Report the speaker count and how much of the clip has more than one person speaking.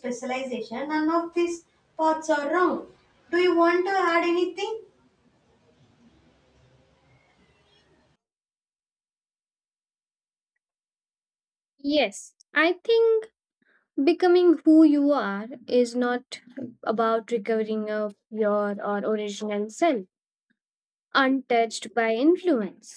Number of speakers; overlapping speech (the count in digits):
2, no overlap